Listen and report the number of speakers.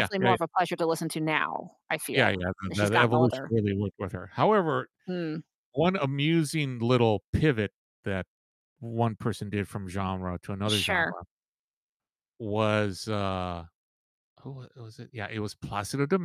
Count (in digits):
2